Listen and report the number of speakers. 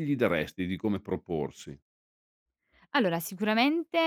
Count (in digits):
2